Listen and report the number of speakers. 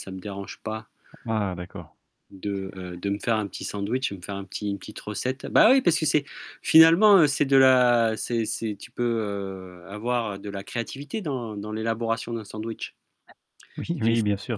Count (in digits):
2